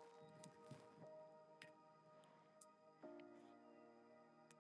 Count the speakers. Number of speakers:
zero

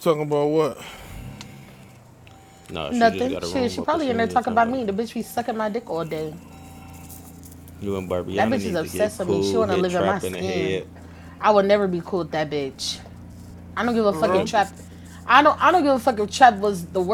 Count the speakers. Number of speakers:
three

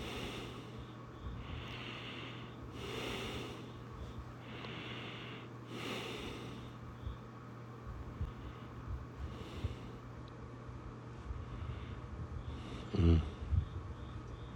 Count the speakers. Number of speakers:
zero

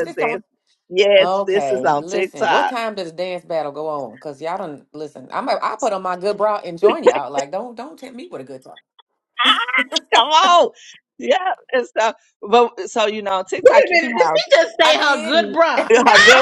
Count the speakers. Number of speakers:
three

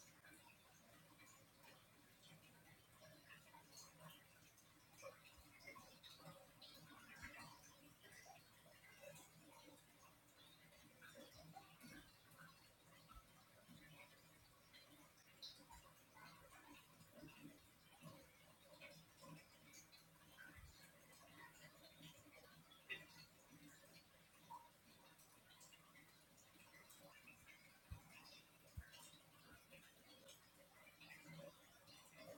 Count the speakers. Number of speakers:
zero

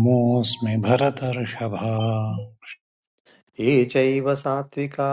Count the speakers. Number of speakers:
two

